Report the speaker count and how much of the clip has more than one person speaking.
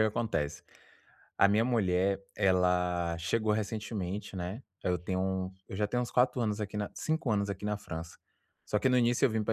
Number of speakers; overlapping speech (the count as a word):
one, no overlap